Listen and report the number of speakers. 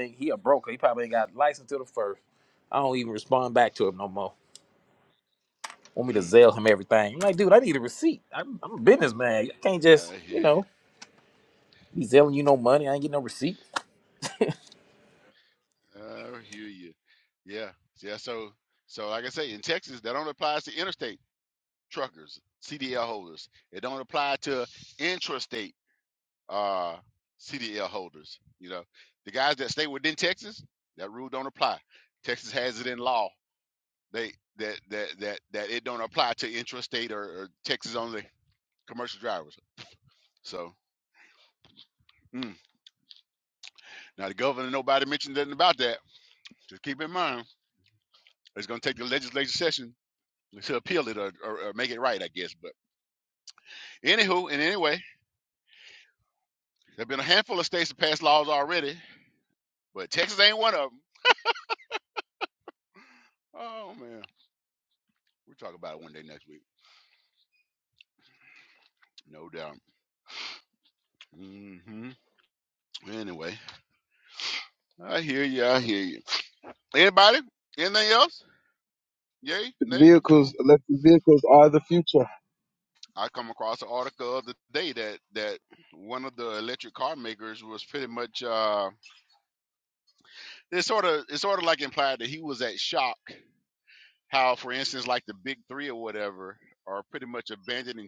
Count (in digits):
3